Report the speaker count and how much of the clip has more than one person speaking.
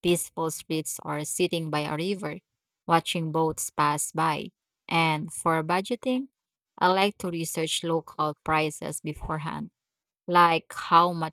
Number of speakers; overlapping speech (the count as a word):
one, no overlap